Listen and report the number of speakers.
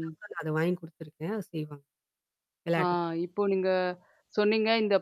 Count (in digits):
2